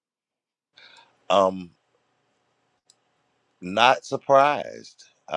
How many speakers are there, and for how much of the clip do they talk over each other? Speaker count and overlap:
1, no overlap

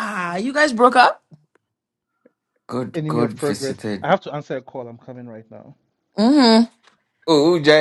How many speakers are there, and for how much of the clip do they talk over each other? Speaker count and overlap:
3, about 14%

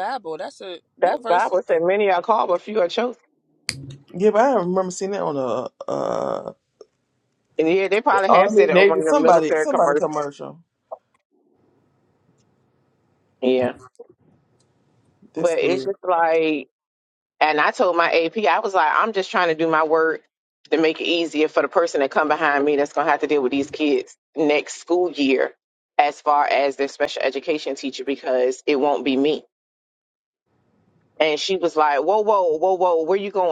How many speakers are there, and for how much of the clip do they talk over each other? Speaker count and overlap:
3, about 8%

